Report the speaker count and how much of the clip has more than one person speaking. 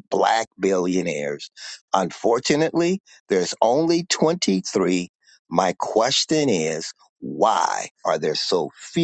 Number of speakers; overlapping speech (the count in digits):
1, no overlap